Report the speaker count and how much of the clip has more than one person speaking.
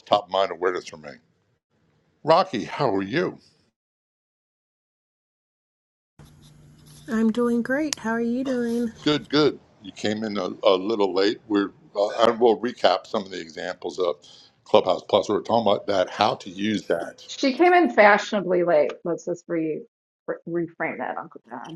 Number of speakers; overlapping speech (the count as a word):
three, no overlap